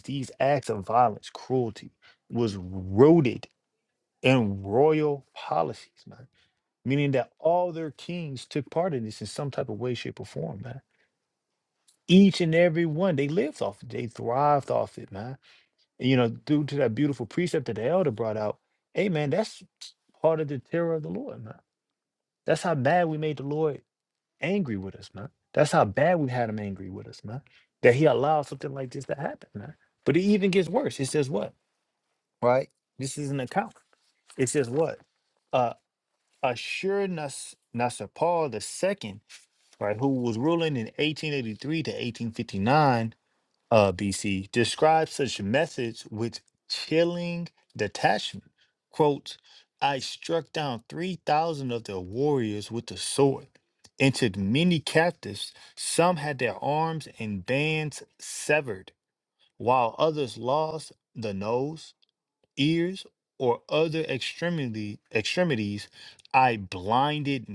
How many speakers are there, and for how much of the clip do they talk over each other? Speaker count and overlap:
1, no overlap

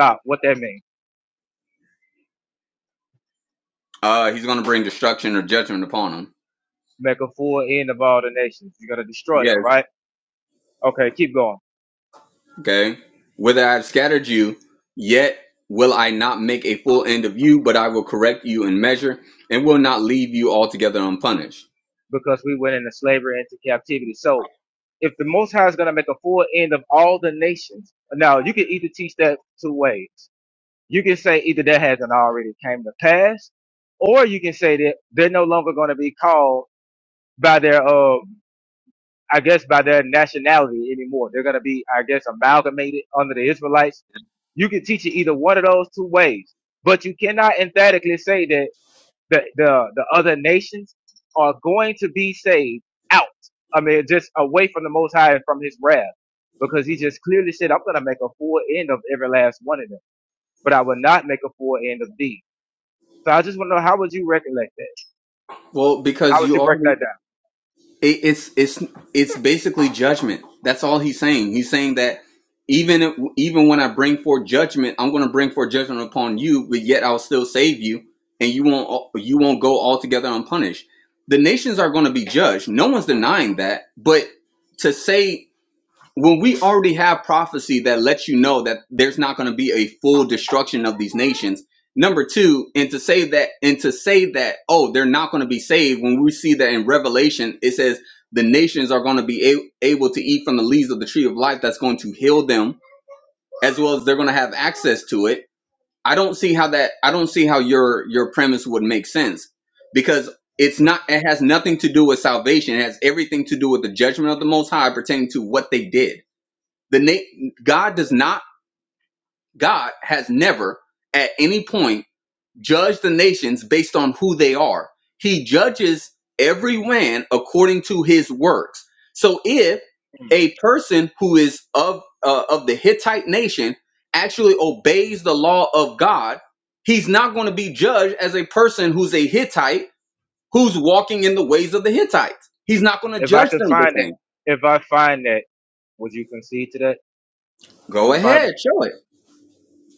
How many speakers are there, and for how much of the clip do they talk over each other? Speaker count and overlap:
2, about 2%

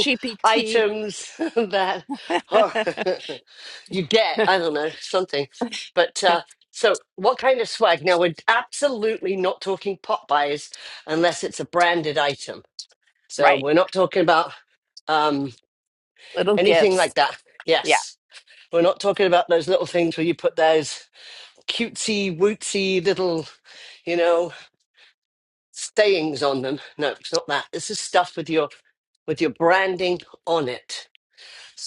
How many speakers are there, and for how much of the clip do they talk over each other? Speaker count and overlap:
2, about 4%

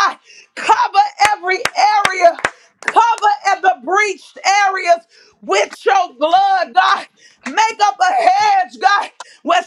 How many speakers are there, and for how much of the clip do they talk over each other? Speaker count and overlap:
1, no overlap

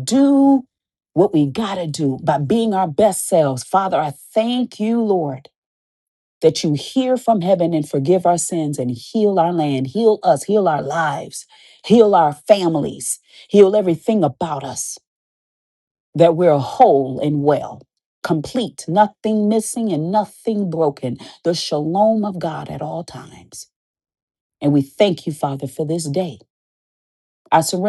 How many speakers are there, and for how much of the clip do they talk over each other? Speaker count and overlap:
1, no overlap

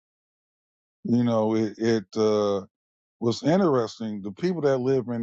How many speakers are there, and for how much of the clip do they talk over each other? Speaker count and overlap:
1, no overlap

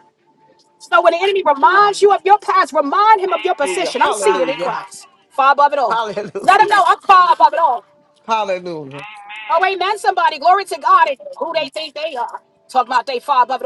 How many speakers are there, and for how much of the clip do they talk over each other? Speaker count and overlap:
3, about 19%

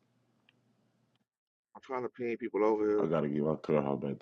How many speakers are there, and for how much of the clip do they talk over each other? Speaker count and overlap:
2, about 3%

